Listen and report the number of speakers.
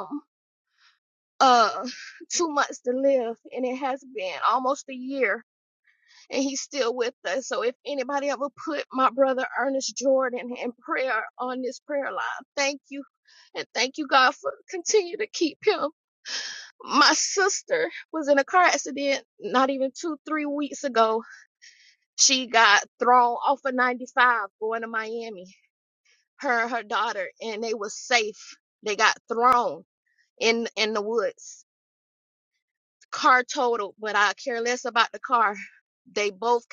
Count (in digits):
1